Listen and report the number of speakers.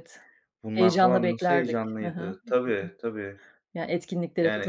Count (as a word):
two